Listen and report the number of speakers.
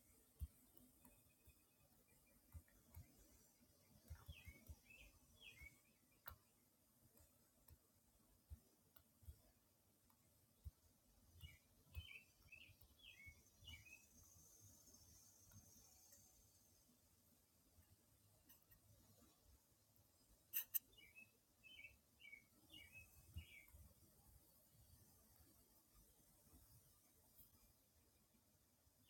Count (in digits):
0